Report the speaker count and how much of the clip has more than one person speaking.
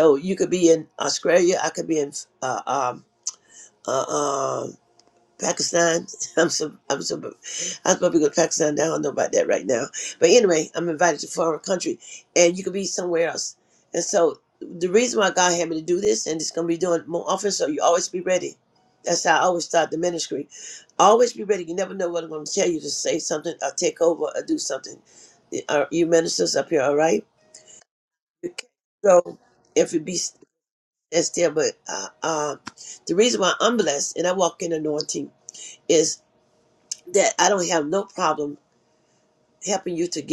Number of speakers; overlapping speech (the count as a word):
one, no overlap